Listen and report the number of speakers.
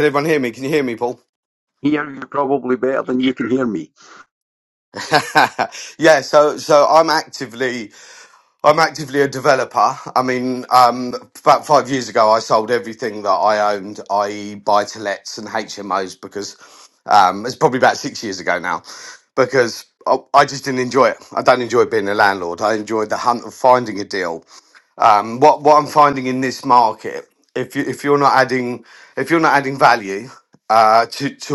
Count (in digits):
2